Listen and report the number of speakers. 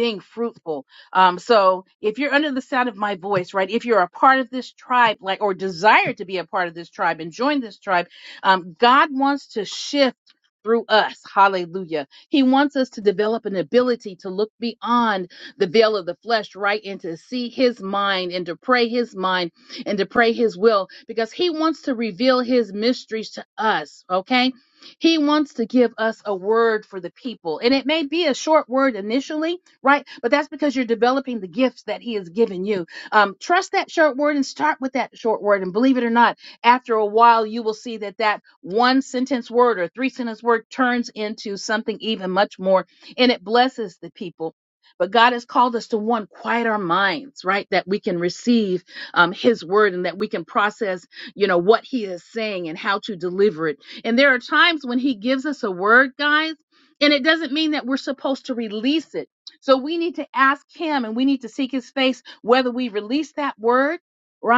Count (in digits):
1